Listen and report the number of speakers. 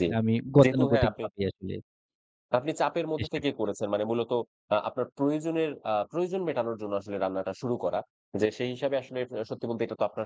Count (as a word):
two